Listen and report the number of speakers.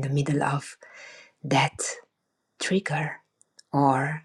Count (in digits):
1